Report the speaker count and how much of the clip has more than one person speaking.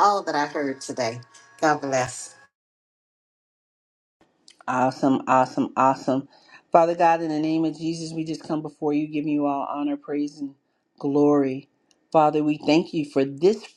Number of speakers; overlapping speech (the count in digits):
2, no overlap